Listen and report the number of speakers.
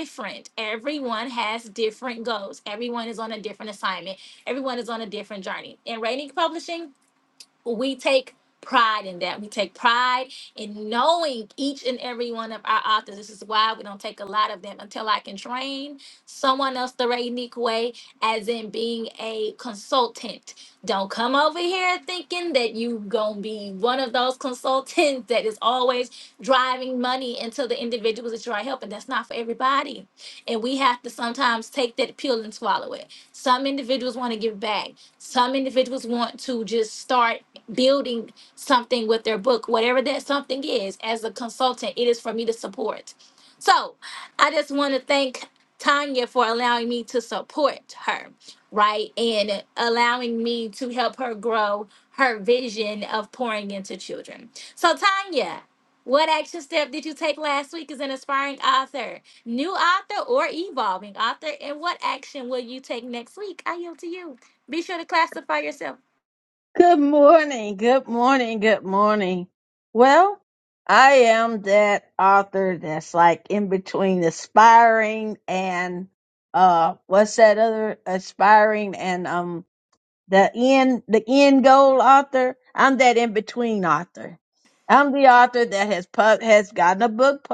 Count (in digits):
2